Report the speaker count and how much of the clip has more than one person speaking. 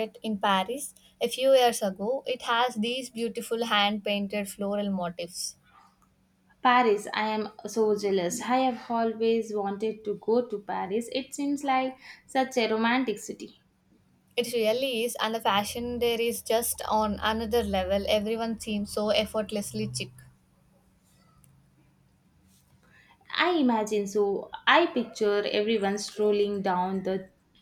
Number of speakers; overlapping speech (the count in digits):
2, no overlap